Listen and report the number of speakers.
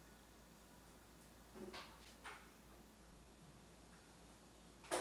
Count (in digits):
0